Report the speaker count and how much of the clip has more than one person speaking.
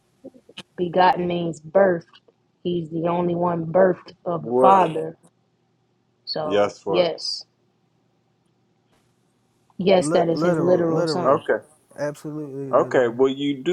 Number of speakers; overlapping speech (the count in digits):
3, about 22%